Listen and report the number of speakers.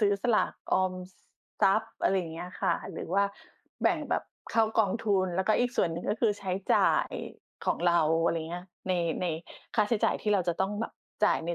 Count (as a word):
one